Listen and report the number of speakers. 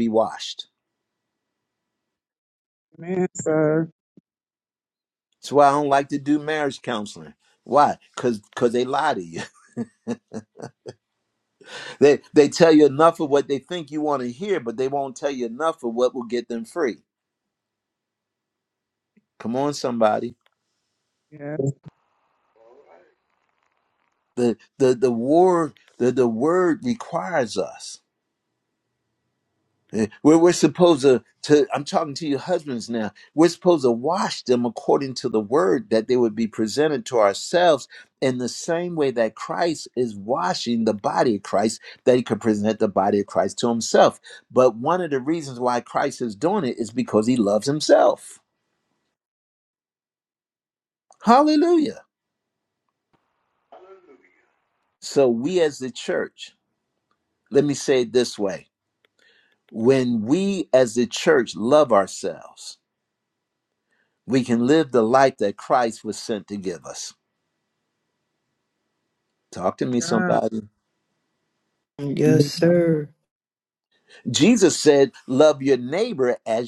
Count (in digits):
3